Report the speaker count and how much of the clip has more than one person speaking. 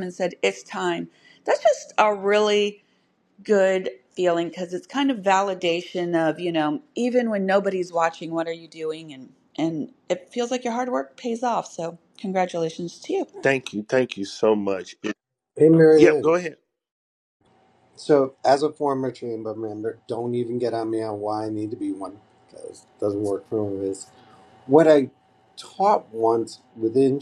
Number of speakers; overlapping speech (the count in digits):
3, about 1%